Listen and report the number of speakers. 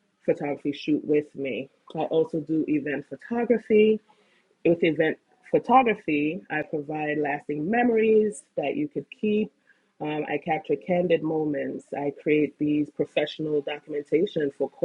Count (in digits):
1